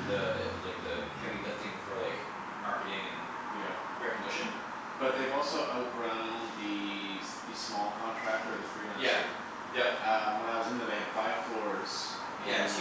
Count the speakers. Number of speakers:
2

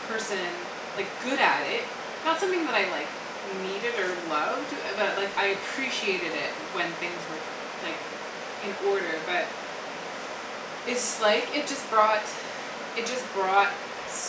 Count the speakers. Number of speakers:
1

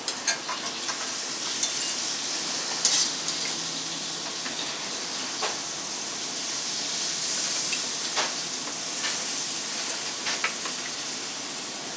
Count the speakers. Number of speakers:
0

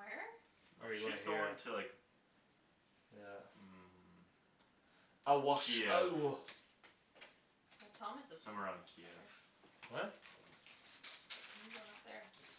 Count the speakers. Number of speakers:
3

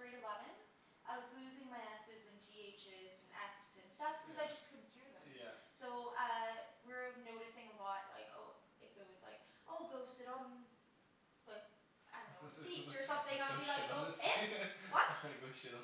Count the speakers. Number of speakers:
2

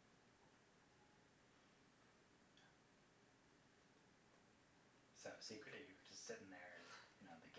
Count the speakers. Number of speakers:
1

